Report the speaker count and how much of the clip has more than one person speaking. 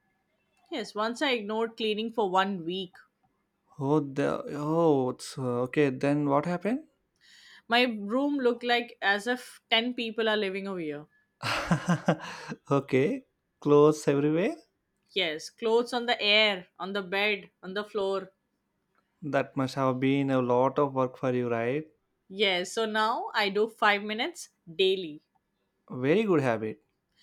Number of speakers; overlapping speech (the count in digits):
2, no overlap